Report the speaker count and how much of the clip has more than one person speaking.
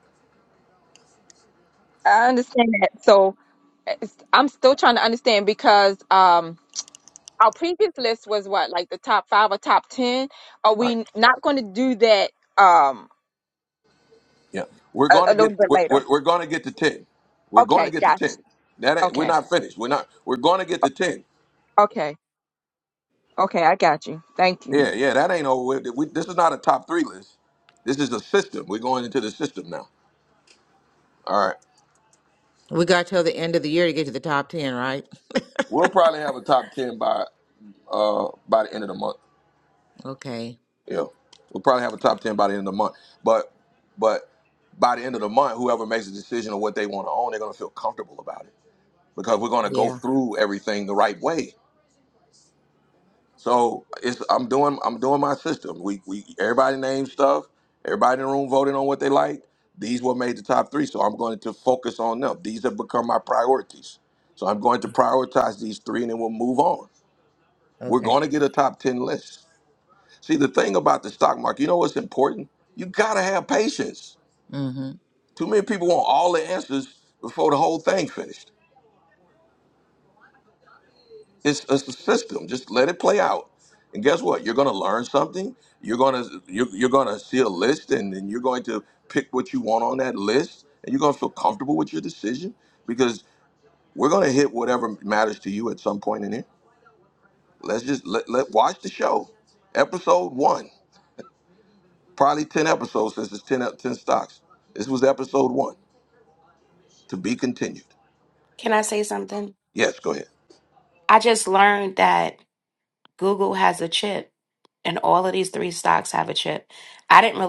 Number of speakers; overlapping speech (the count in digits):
4, about 2%